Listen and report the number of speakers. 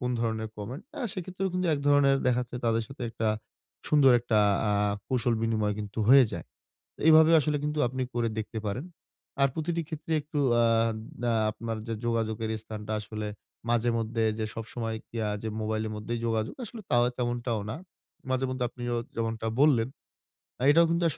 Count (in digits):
1